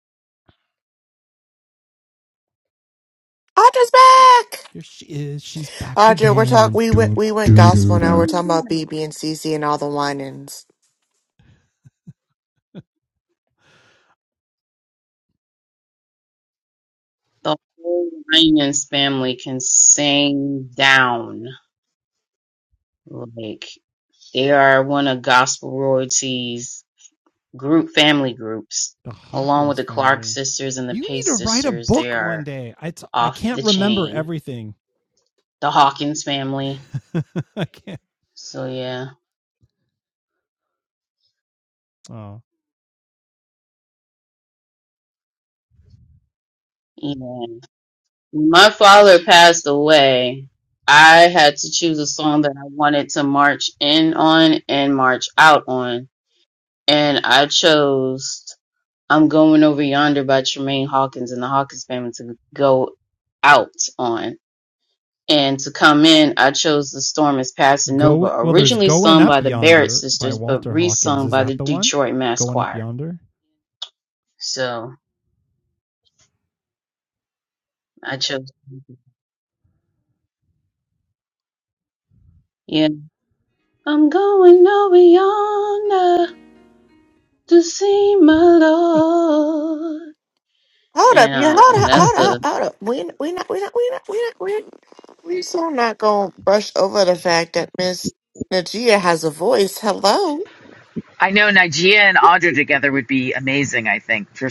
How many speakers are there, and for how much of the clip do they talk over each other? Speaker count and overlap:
4, about 11%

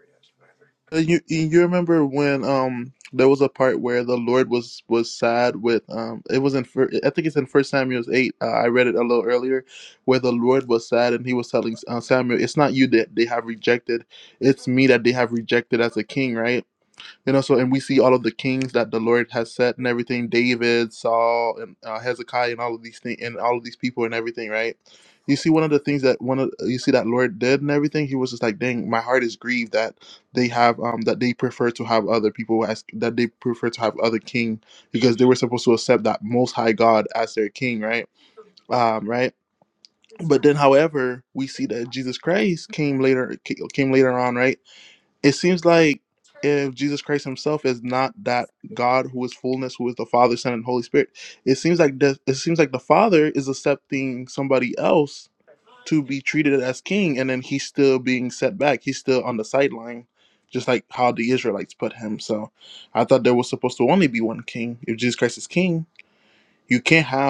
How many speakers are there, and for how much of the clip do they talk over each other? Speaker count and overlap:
1, no overlap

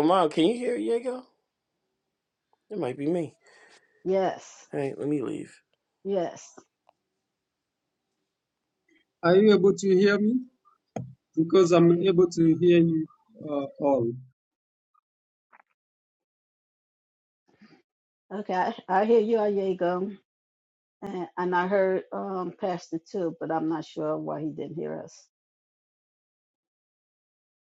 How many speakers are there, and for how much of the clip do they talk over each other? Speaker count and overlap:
3, no overlap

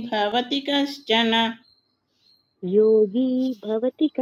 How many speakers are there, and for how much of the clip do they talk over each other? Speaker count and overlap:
2, no overlap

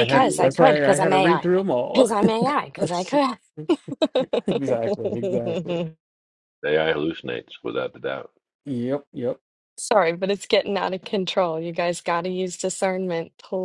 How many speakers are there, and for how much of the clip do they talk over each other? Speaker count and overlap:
3, about 15%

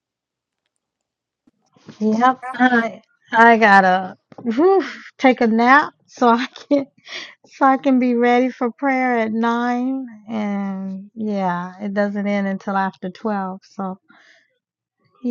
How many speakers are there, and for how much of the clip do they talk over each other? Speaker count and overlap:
1, no overlap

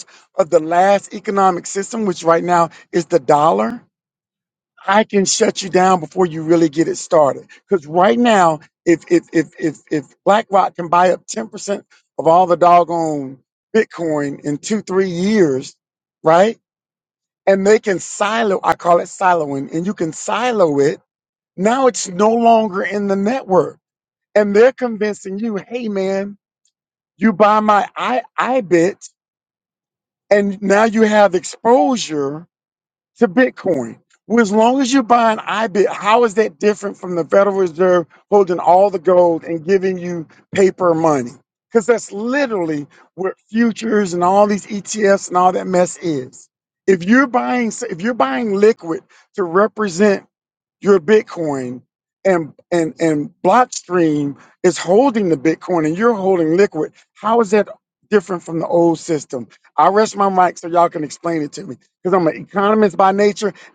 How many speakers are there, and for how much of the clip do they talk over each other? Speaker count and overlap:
1, no overlap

